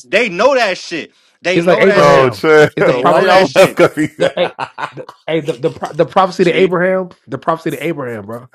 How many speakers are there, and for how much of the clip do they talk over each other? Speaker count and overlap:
three, about 28%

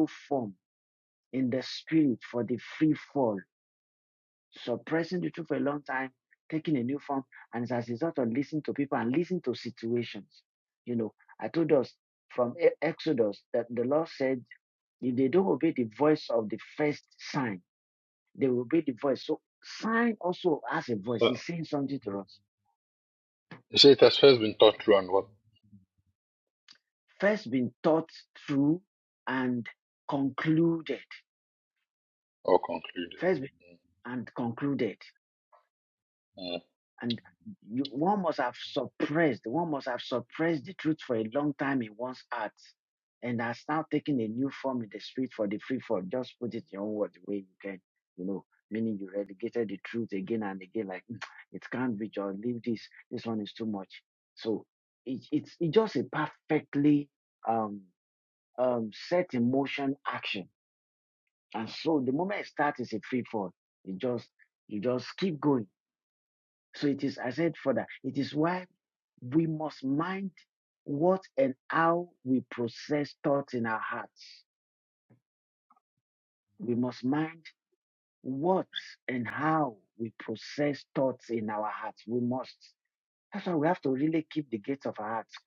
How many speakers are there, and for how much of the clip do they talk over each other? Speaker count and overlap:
two, under 1%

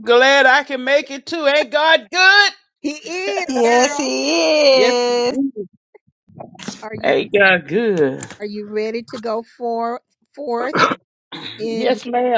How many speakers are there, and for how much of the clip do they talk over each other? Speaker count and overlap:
three, about 10%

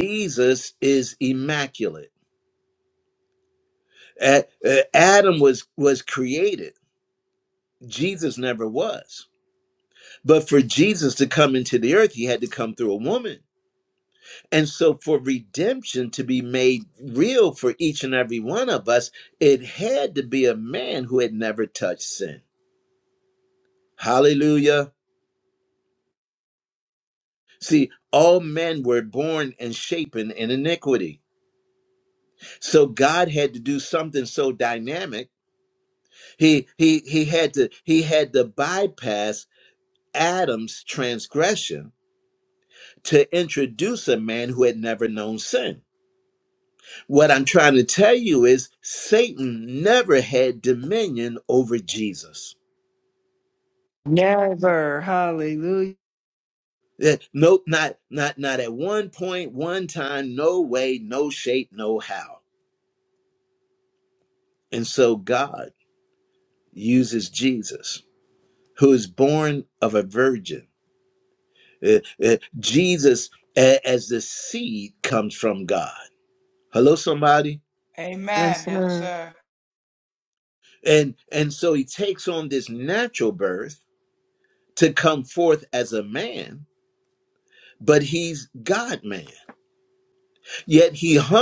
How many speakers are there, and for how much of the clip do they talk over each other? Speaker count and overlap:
three, about 1%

